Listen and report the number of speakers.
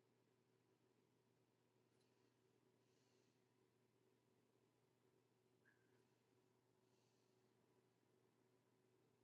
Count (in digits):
0